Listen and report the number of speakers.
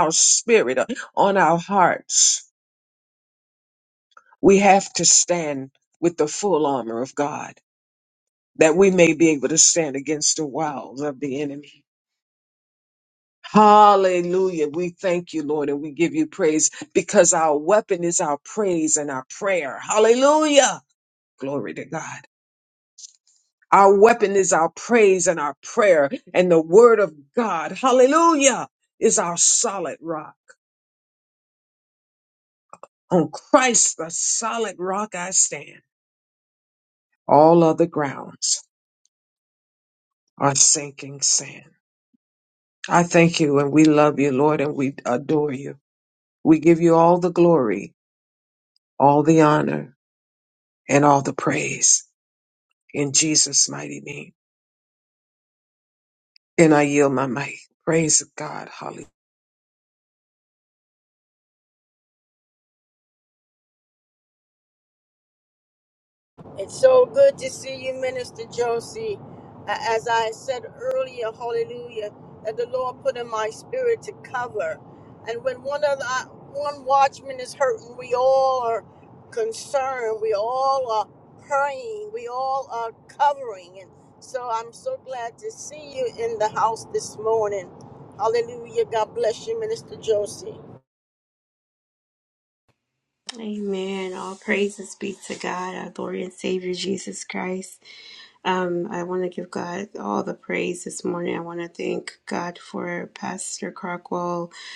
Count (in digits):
3